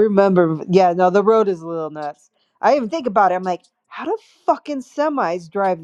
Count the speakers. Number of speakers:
1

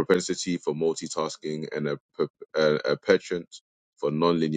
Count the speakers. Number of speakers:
1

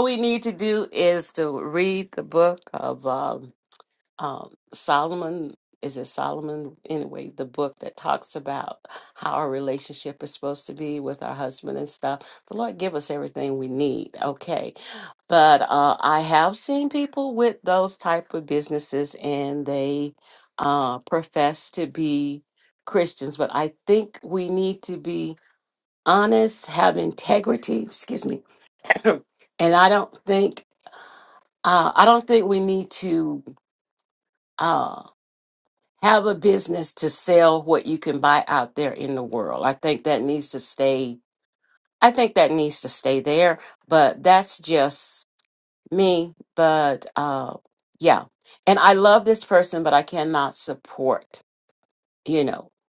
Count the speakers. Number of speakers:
1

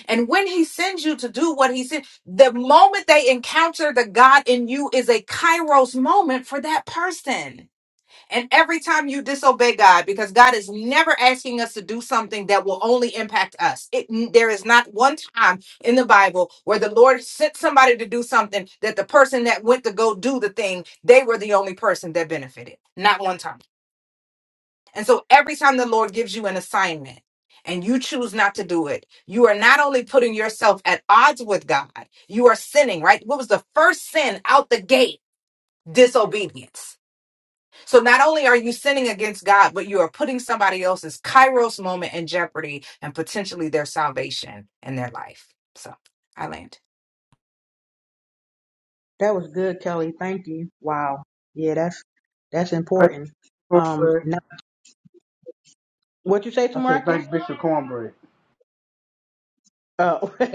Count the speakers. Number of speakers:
3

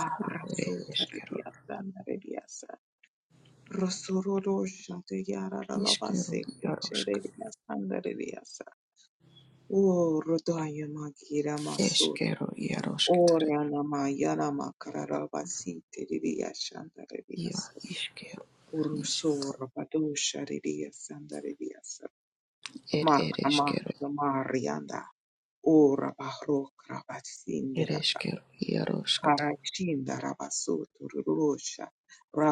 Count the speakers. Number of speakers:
2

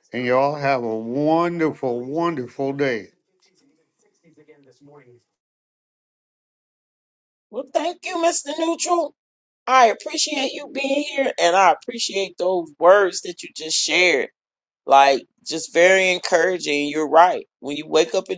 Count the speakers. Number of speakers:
2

